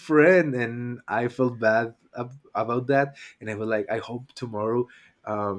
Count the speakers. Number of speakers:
1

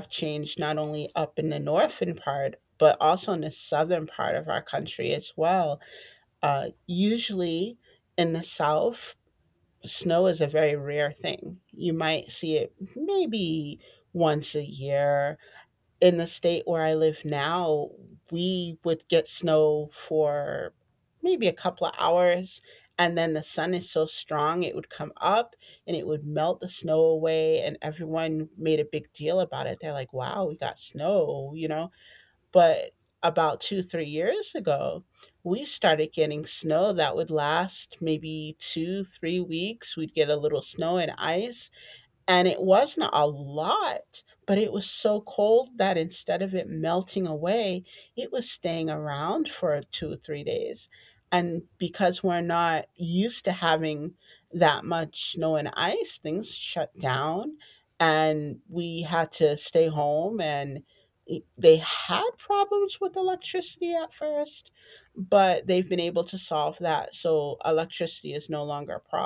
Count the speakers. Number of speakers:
1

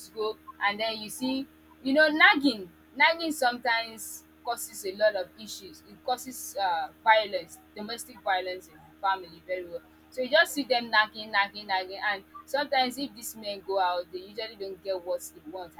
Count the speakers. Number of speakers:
1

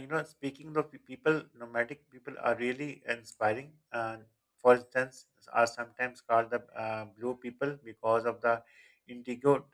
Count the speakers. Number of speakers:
1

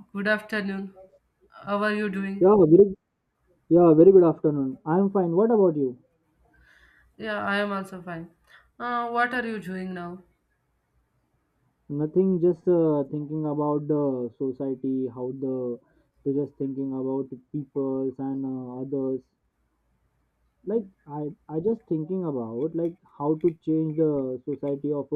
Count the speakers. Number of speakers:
2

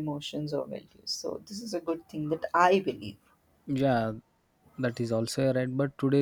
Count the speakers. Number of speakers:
2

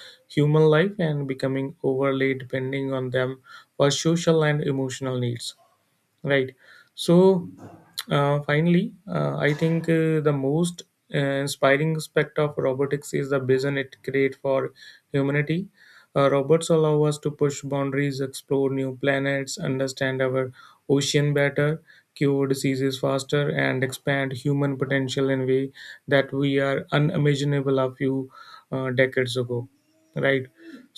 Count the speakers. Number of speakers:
1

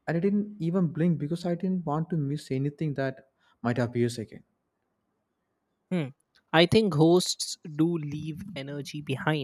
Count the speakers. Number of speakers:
2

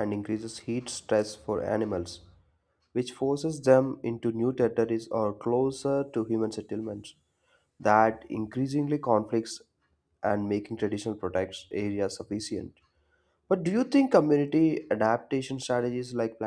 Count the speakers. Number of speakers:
1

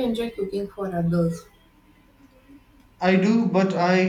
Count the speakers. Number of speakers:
2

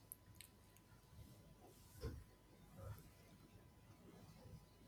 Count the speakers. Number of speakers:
0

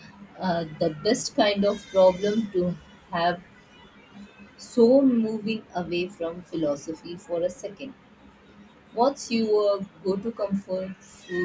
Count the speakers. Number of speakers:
1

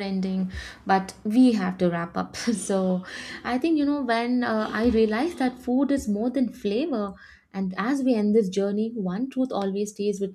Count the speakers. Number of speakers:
1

